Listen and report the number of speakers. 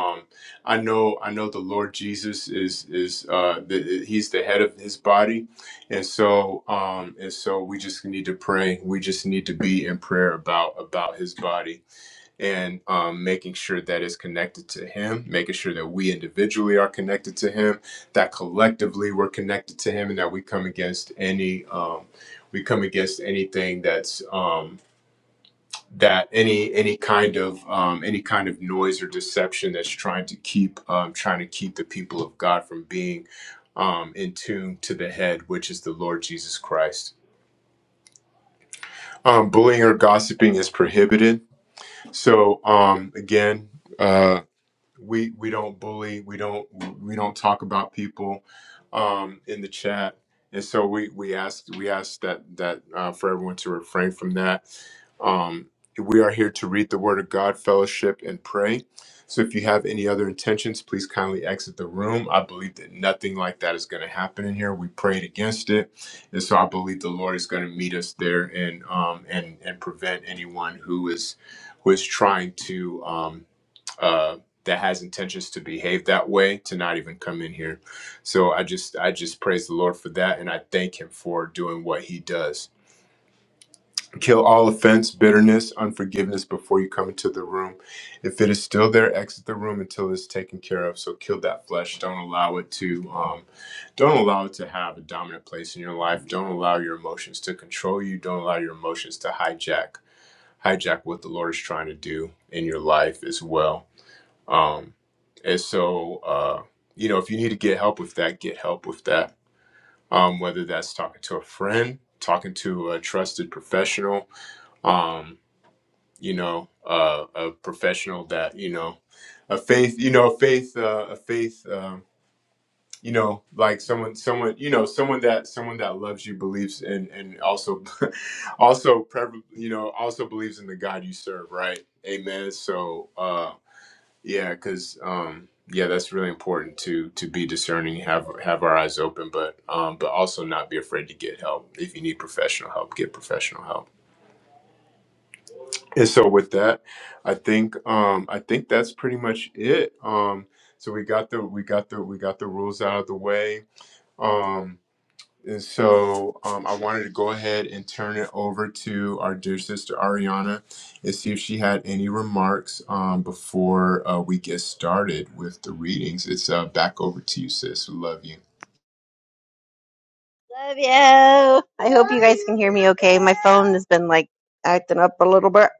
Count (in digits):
2